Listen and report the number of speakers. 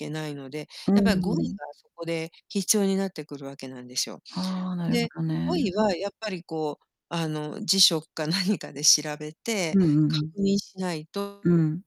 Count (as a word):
two